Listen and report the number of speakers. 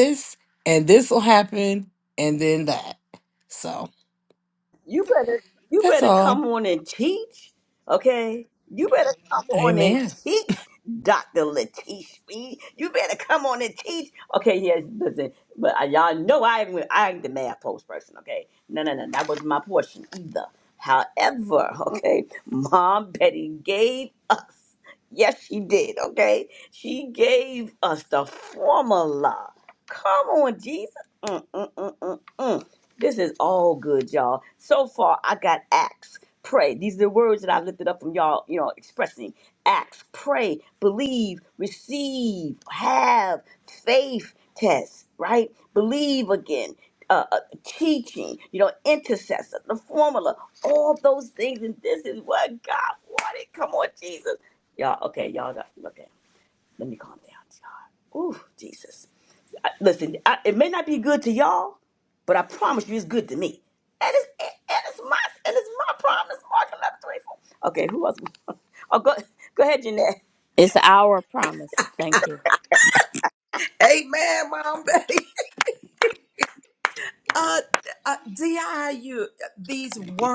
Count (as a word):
four